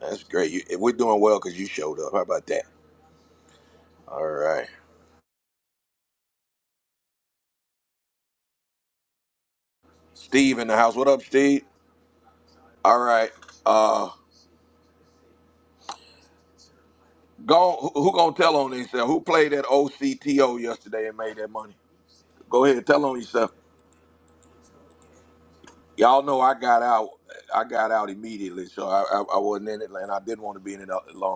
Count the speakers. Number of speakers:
one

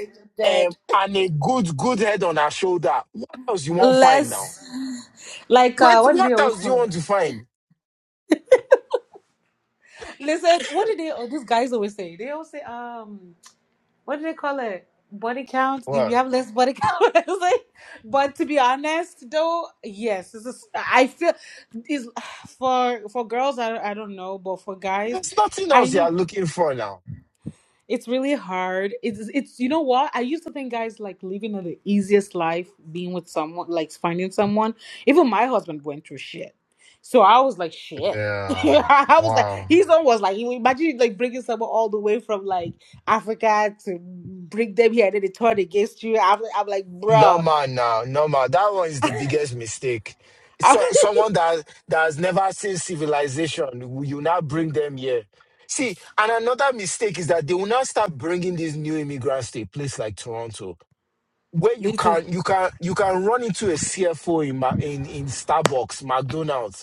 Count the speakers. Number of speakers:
two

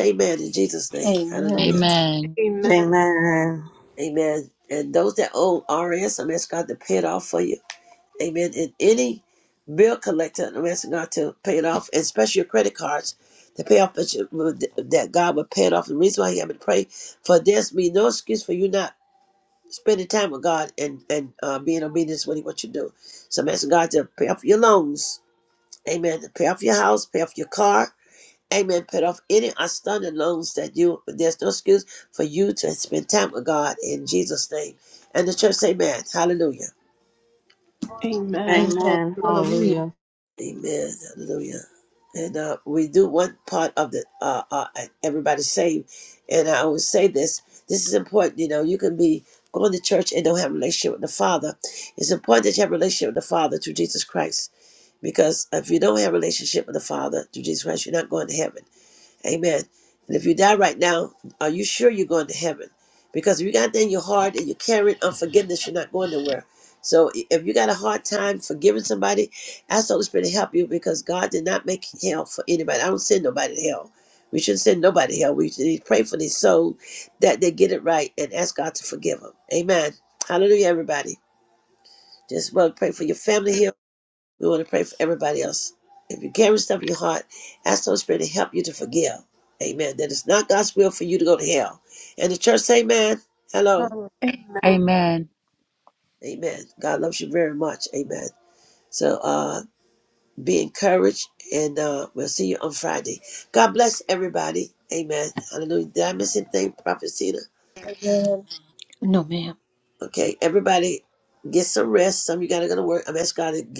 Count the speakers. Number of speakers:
five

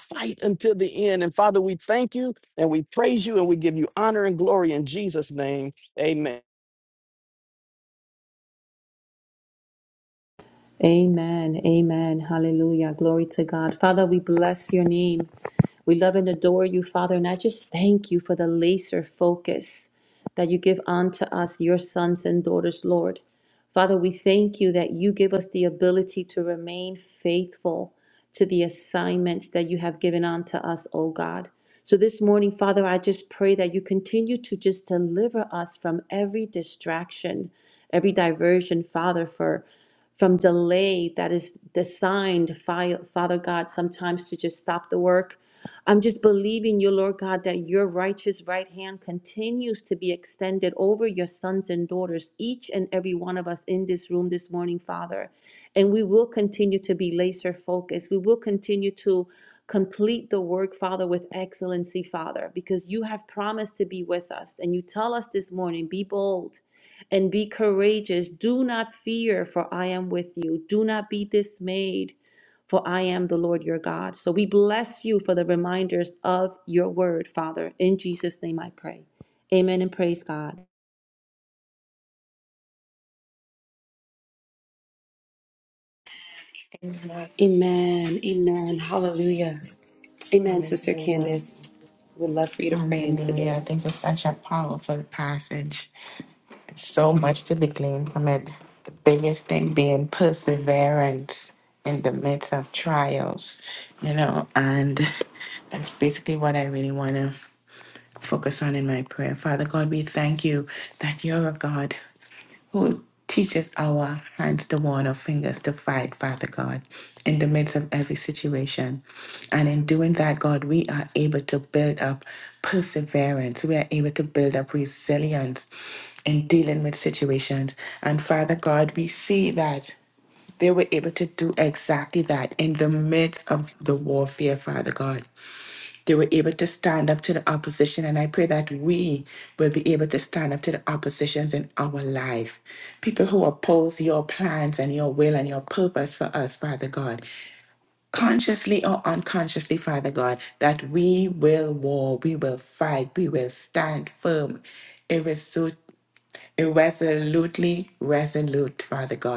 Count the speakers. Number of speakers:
four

